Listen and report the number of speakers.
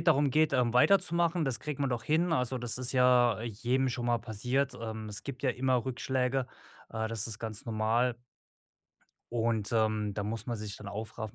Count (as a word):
one